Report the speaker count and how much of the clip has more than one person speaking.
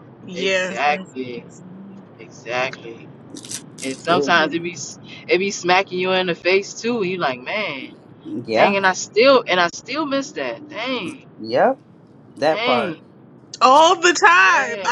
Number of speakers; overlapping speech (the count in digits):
3, about 13%